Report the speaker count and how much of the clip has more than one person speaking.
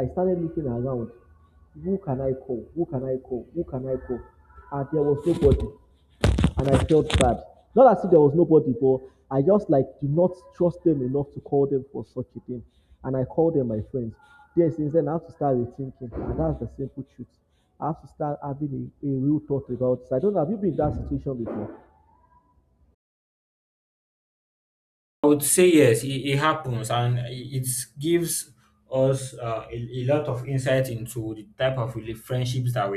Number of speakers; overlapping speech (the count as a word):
two, no overlap